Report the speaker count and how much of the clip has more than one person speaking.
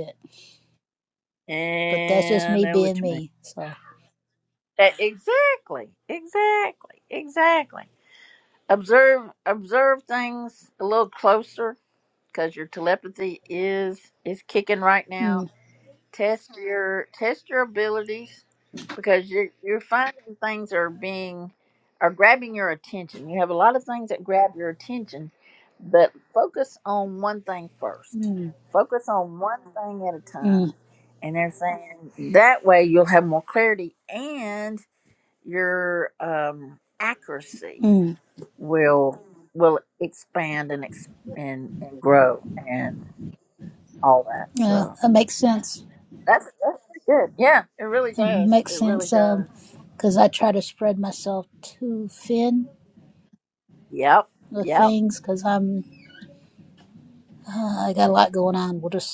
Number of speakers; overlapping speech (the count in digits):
2, about 6%